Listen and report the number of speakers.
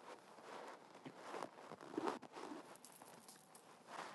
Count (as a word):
zero